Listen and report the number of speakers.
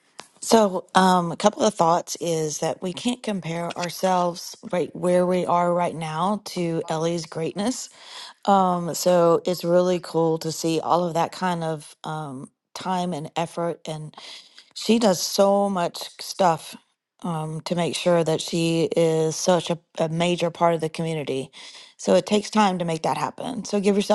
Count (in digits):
1